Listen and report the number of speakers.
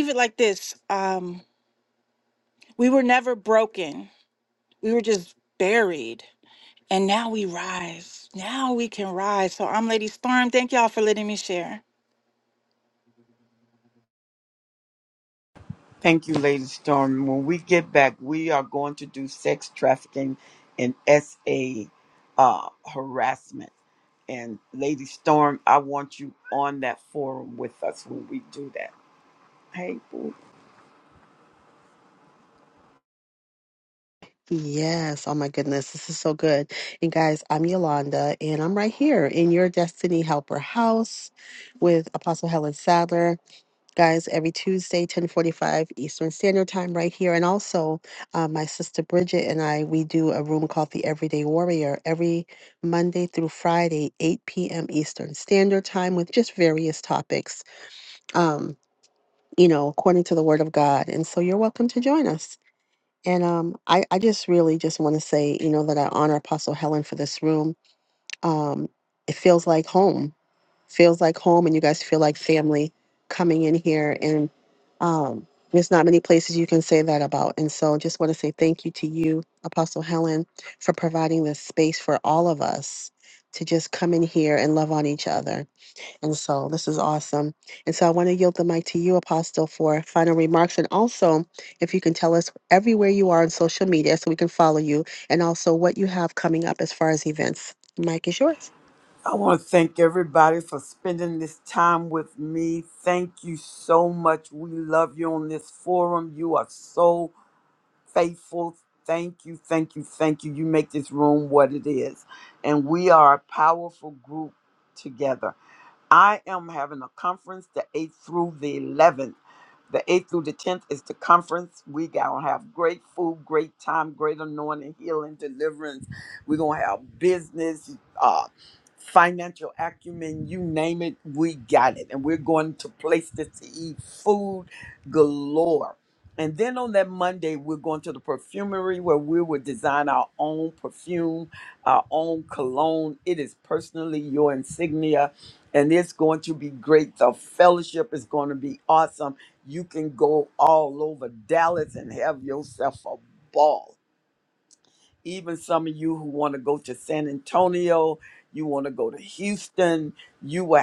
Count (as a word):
three